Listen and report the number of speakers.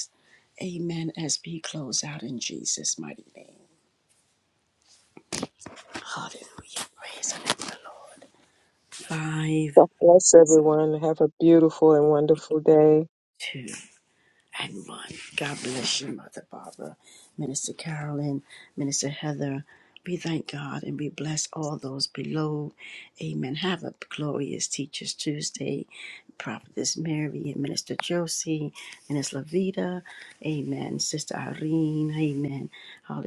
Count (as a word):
two